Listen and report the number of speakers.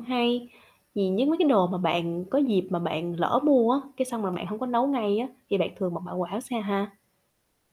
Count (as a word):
one